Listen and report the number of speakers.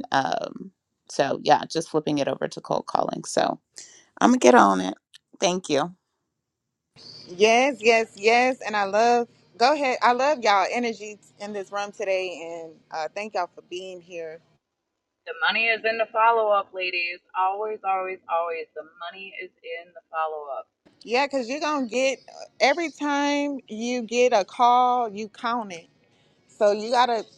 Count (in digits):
3